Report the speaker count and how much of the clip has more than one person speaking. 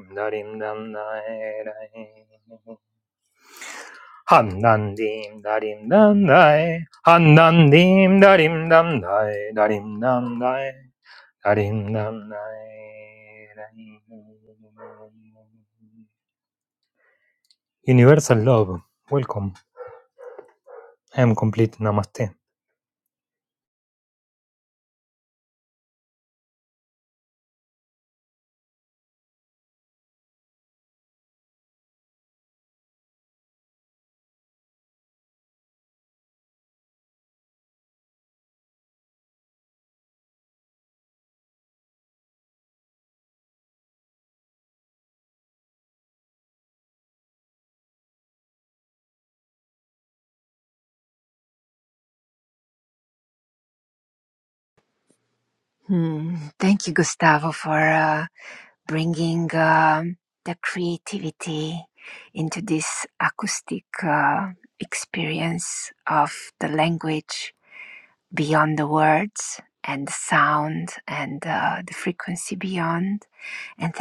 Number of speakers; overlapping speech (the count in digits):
2, no overlap